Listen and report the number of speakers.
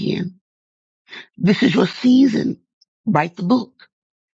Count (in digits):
1